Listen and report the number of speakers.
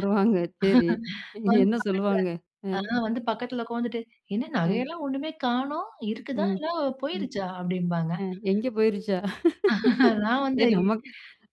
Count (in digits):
2